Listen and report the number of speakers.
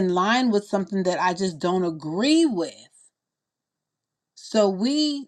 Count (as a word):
one